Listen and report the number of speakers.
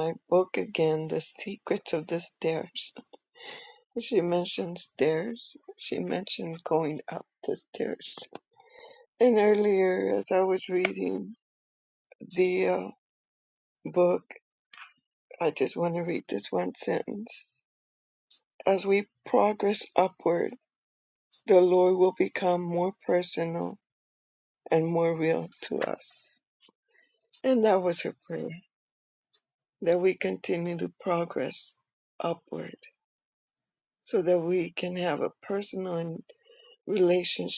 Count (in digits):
1